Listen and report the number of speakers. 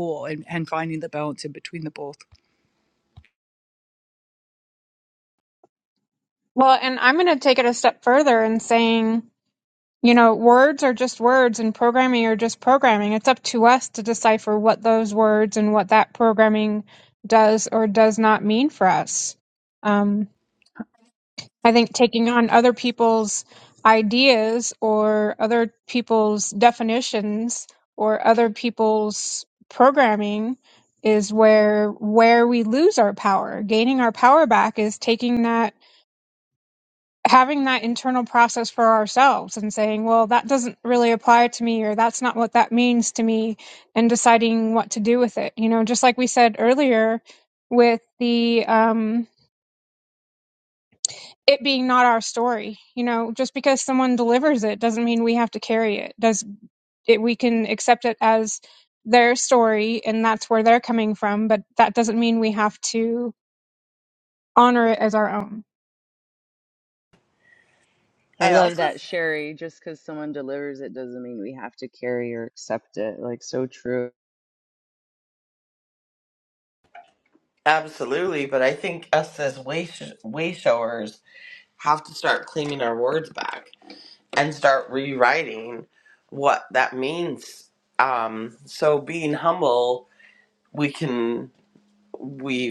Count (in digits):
4